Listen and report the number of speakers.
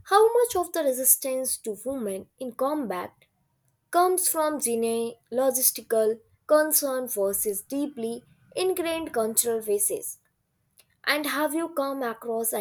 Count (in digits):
1